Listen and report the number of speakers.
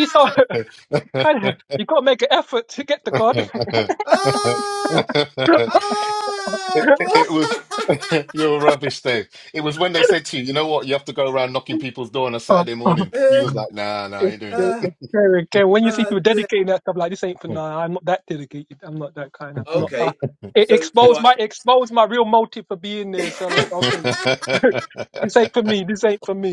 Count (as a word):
three